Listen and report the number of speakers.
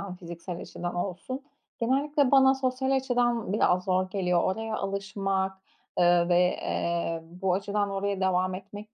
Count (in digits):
1